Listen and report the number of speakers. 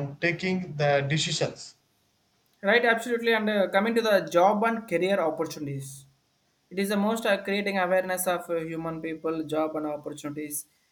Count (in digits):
2